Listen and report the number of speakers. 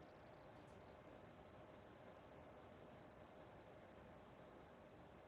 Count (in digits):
0